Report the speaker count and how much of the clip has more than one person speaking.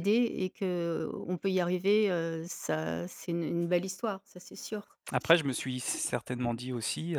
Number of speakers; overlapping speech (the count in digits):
2, no overlap